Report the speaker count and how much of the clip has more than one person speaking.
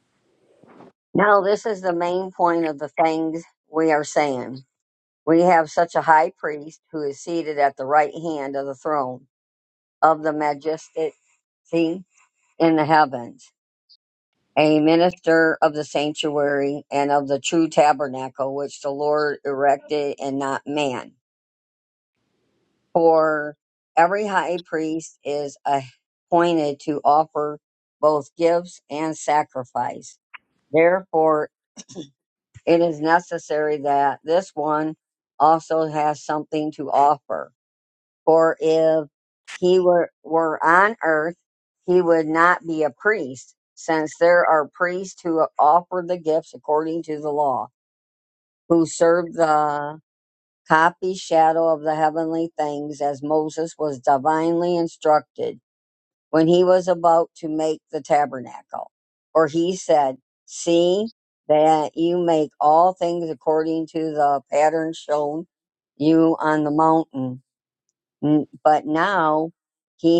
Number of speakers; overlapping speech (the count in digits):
1, no overlap